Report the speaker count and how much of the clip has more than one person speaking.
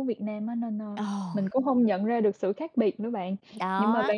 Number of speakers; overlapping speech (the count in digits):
2, about 12%